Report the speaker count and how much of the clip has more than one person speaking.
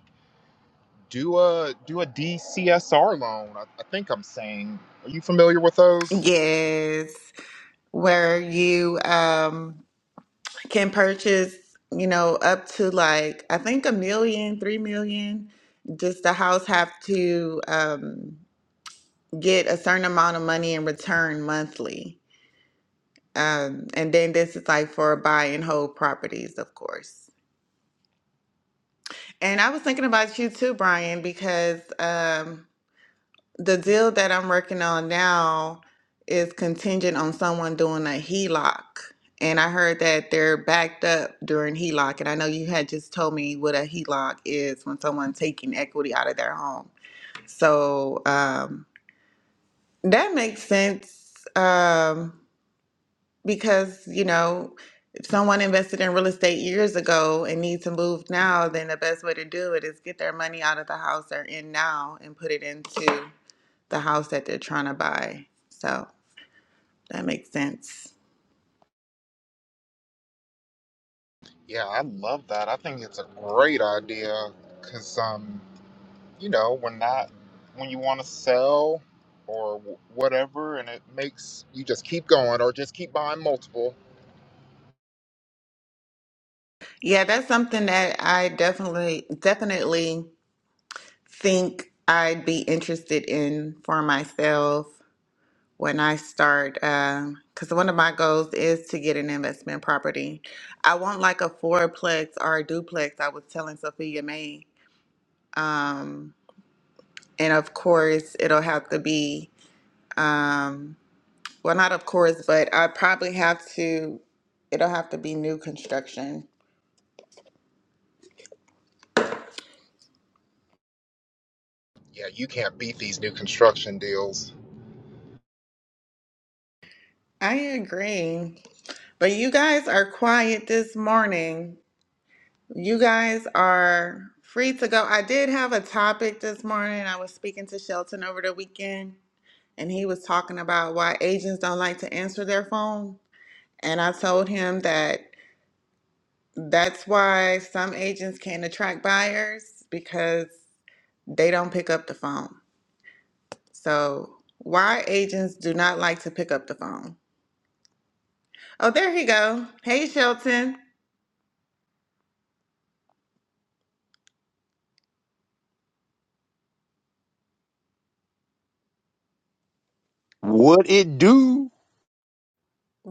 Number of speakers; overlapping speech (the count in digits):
3, under 1%